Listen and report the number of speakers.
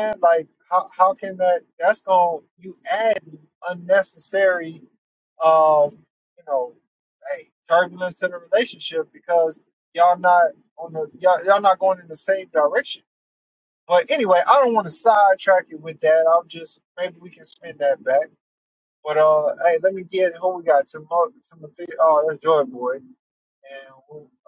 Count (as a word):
one